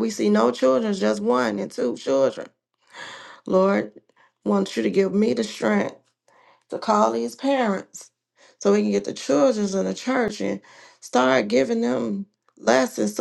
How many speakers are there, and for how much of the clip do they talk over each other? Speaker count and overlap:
1, no overlap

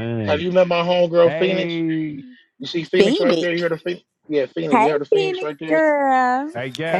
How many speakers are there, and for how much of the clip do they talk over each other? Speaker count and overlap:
3, about 33%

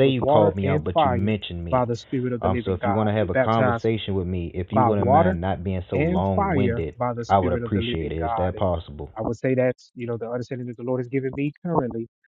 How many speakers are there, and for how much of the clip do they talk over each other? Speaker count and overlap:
2, about 47%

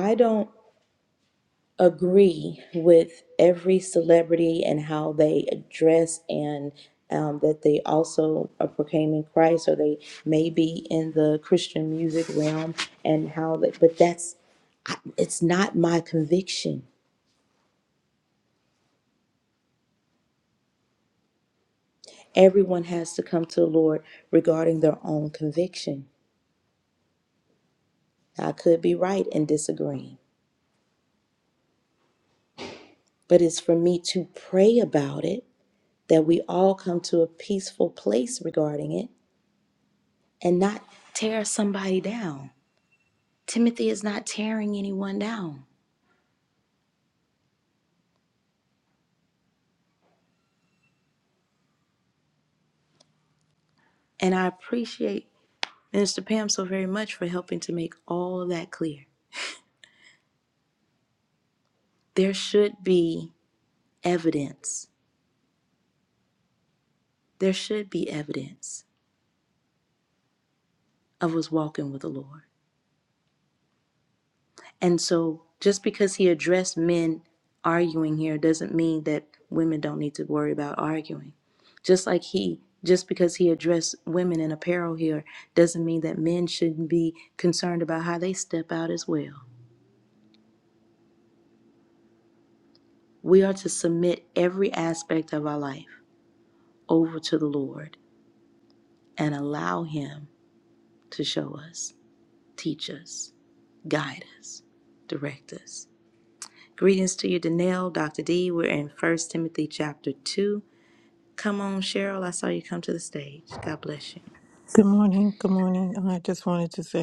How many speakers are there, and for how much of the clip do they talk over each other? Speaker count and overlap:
2, no overlap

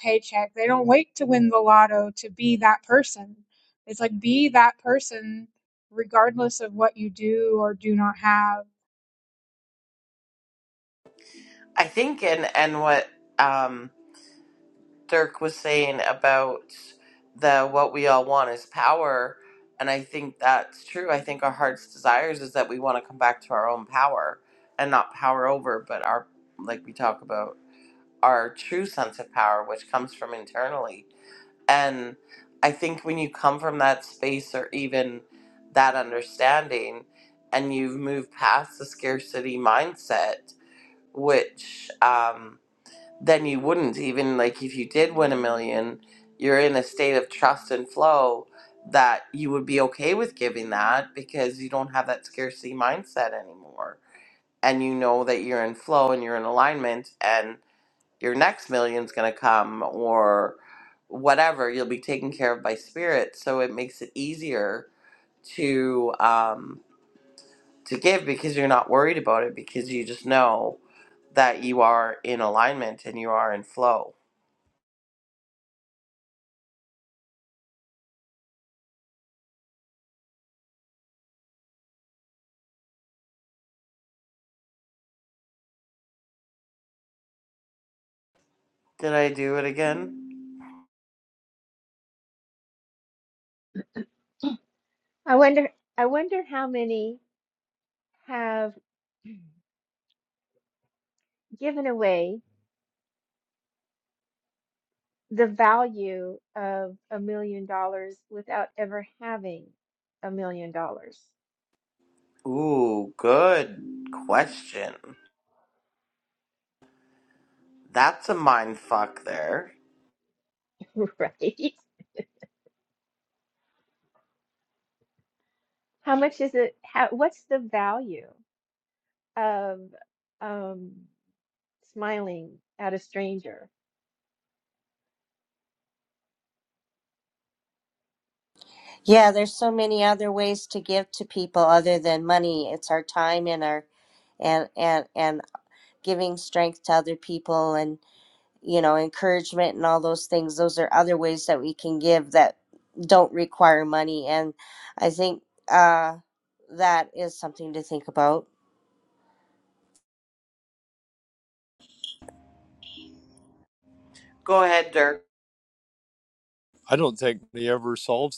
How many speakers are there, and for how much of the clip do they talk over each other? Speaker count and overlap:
5, no overlap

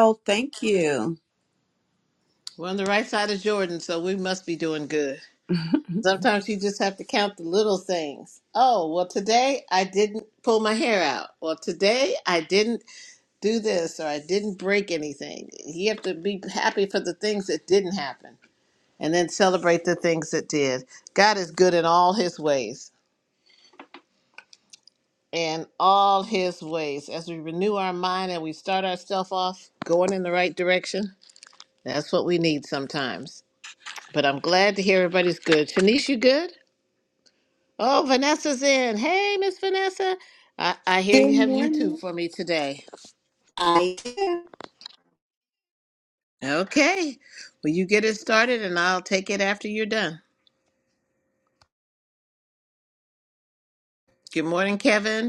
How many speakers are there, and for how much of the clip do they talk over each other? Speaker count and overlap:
3, about 2%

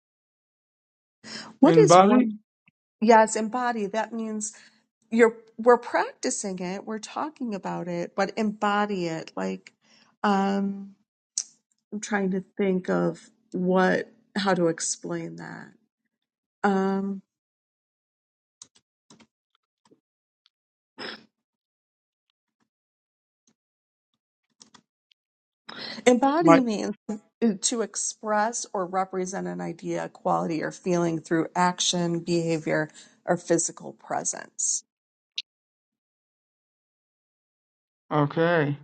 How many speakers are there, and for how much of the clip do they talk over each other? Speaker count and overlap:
2, about 2%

